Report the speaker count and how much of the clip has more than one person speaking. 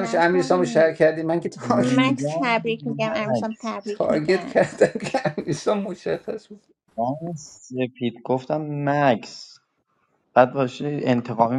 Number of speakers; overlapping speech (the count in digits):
3, about 23%